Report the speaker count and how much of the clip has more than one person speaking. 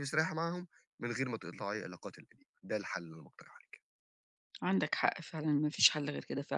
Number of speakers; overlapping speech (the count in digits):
2, no overlap